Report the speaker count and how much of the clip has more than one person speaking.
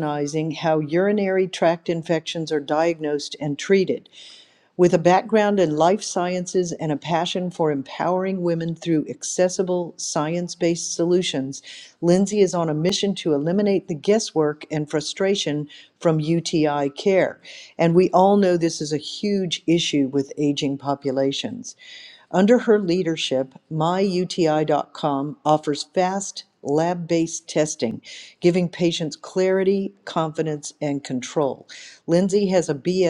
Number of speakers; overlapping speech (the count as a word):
one, no overlap